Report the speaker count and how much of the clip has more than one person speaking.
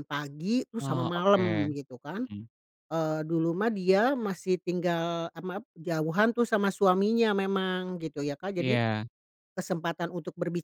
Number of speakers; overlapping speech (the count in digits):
2, about 11%